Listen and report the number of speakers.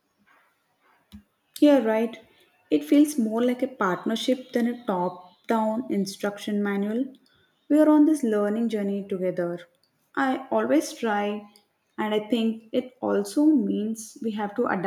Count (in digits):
1